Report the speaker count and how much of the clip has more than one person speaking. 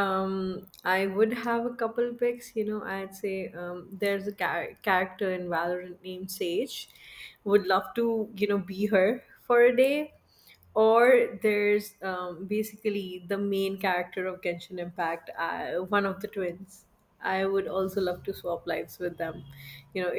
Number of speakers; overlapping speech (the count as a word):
one, no overlap